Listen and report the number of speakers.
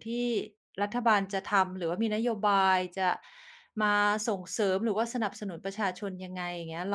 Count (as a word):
one